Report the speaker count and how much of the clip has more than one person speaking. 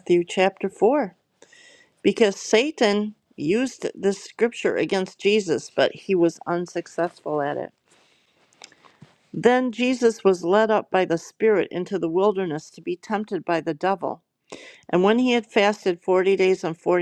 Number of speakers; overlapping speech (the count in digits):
1, no overlap